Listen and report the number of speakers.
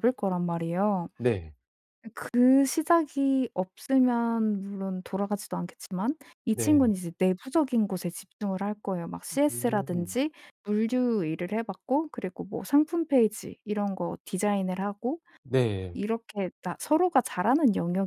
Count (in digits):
2